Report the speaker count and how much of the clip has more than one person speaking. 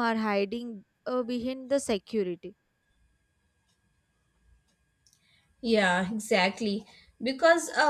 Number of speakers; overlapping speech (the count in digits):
2, no overlap